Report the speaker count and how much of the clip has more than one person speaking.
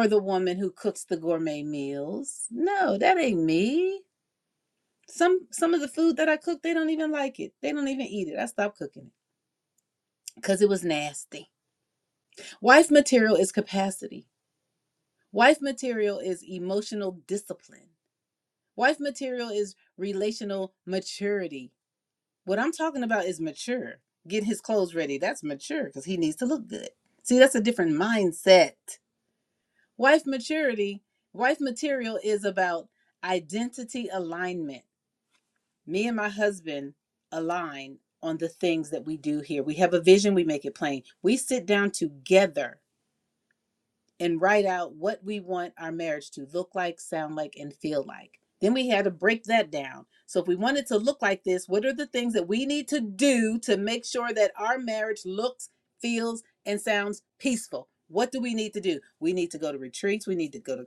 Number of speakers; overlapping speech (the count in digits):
1, no overlap